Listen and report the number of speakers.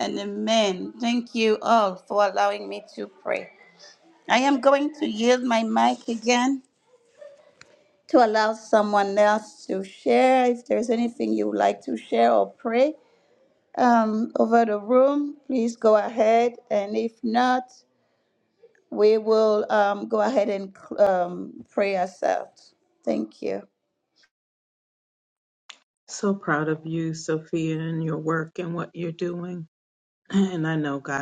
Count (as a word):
two